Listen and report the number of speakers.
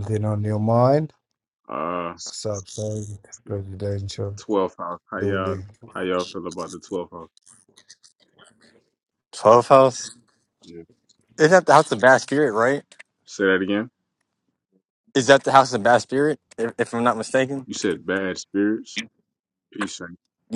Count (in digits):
3